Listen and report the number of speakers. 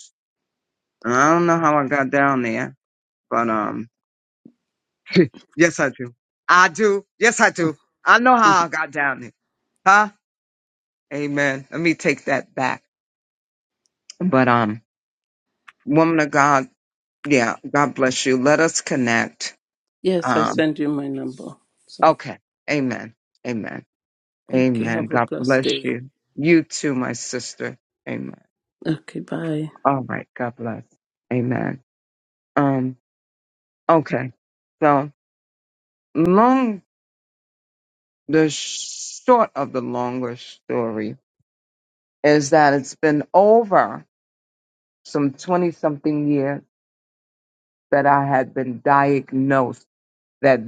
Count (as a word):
two